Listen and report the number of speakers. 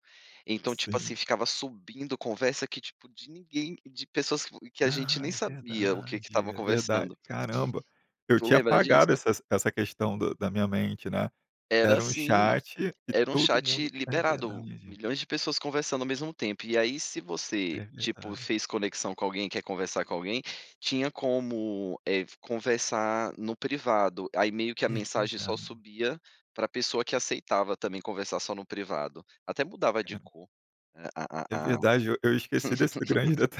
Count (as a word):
two